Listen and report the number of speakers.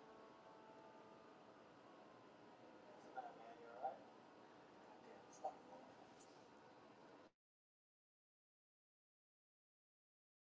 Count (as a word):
zero